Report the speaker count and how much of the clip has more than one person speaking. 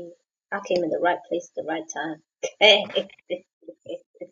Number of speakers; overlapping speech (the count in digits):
1, no overlap